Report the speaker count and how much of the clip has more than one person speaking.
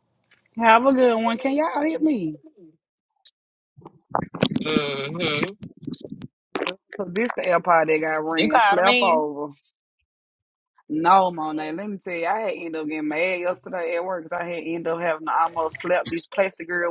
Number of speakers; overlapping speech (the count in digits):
2, about 5%